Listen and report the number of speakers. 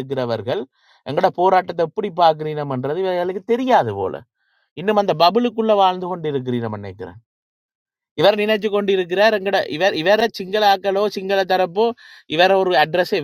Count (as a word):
one